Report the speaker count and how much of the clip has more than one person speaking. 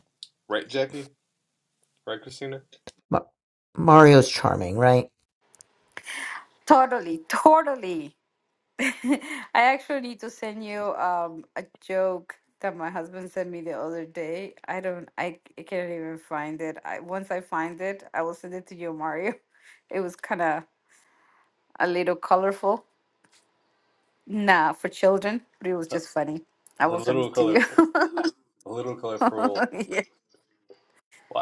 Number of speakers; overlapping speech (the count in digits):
3, about 3%